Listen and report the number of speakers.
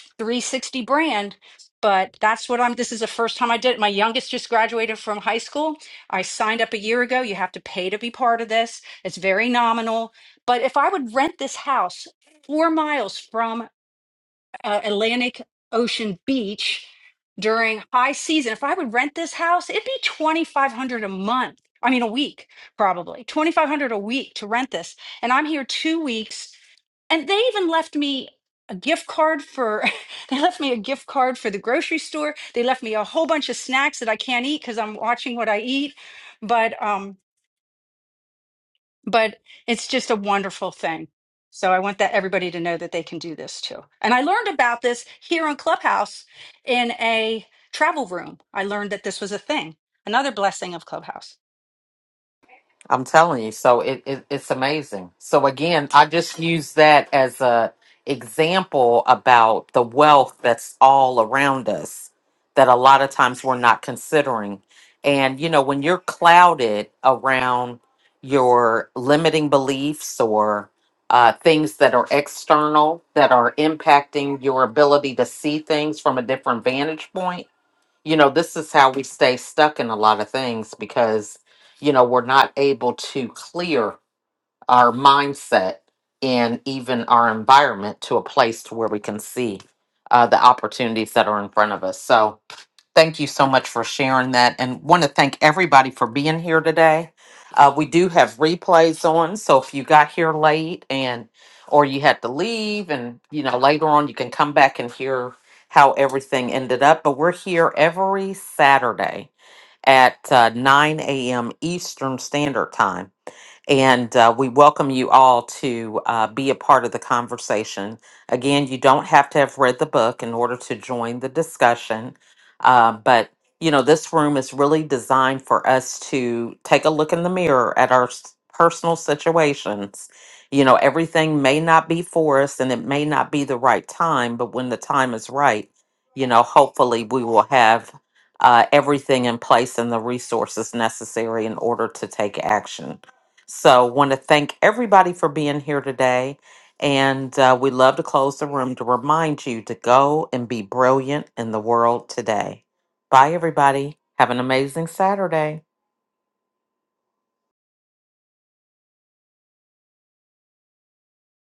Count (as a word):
two